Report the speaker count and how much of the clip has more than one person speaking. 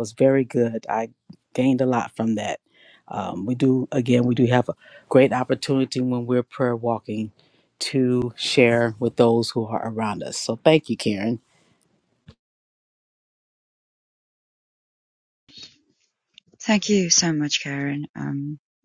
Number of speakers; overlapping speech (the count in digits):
2, no overlap